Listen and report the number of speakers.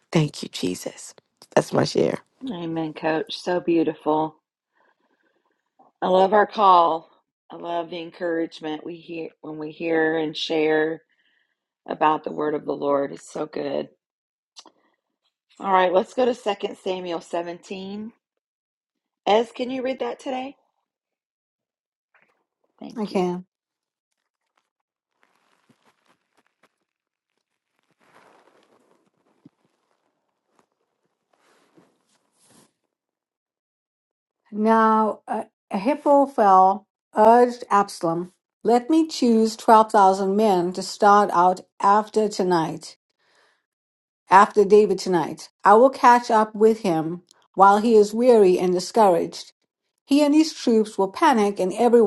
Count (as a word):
three